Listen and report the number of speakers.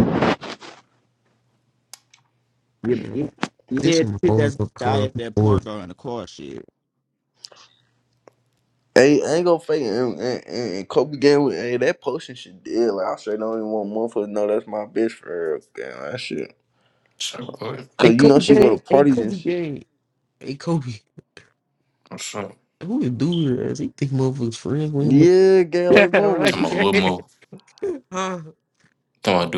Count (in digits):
4